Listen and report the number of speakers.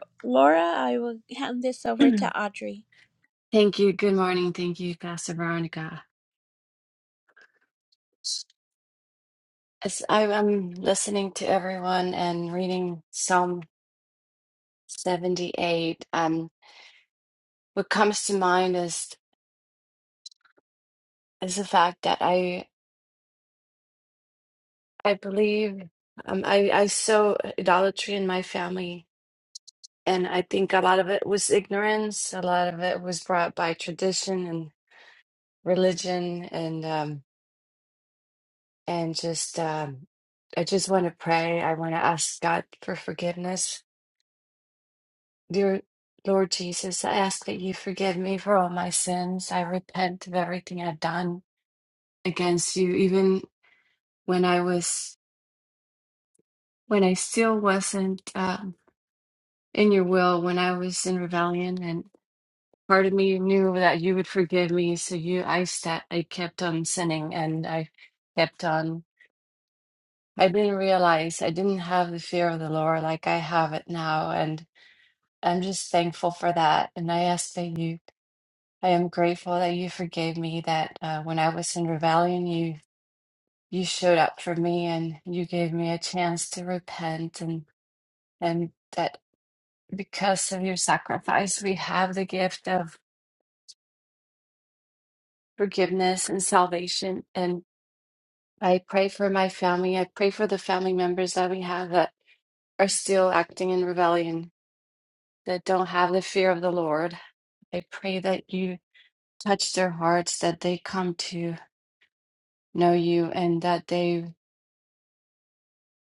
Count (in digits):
2